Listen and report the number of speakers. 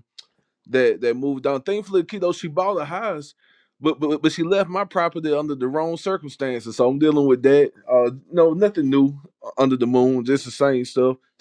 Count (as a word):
one